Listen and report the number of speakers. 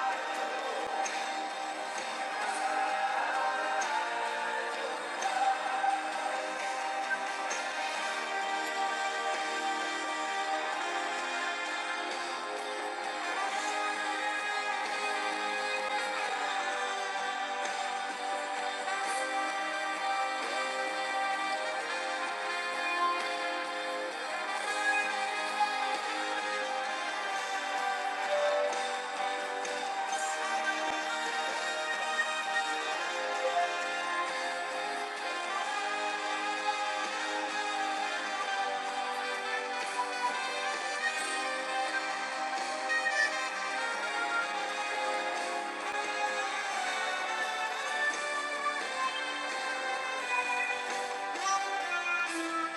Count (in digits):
0